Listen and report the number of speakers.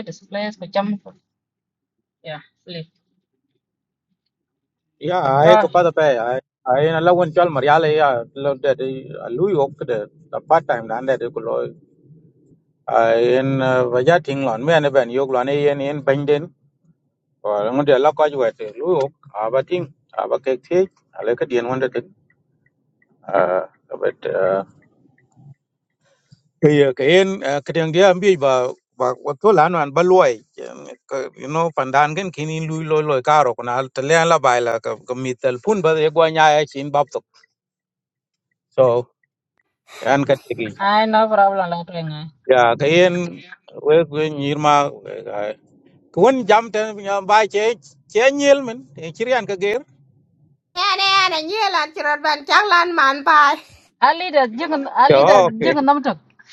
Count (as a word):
three